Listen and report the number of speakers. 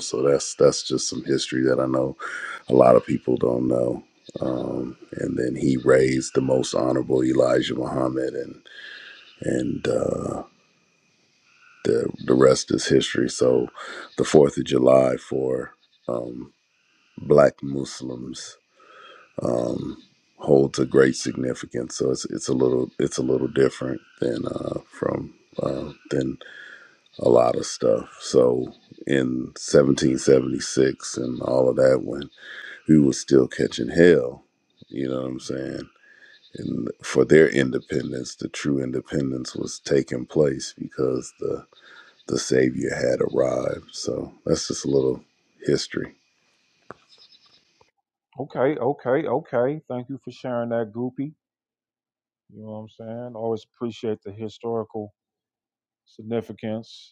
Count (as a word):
two